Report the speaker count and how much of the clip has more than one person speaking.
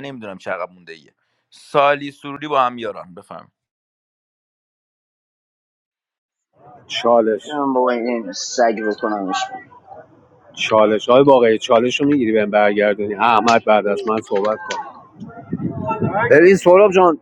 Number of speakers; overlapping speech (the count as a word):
three, under 1%